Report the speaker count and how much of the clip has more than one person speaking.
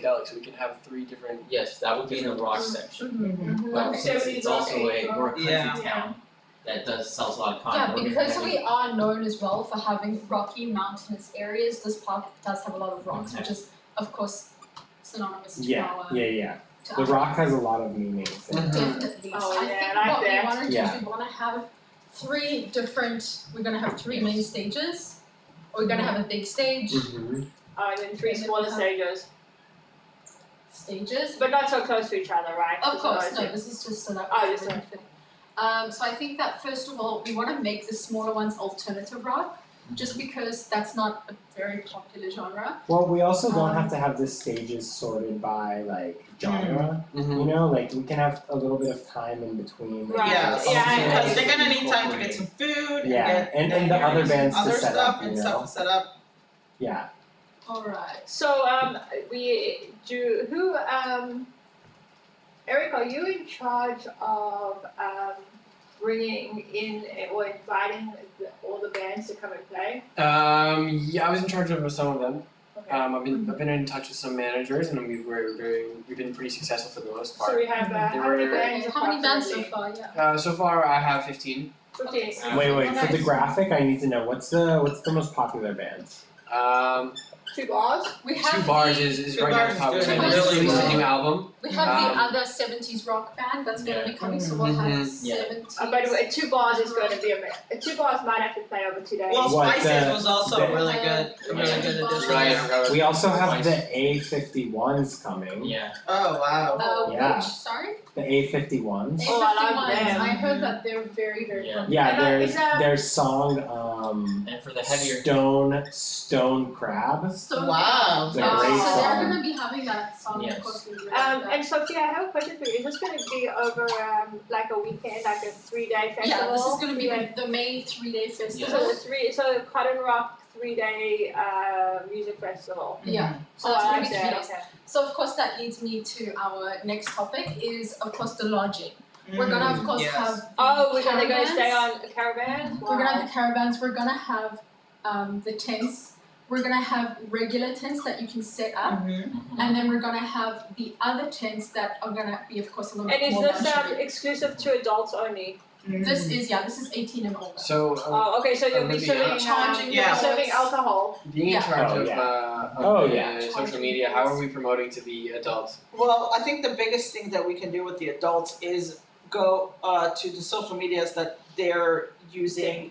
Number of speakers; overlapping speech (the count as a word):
six, about 31%